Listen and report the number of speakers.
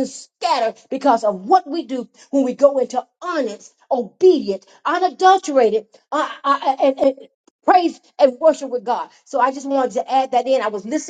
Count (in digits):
1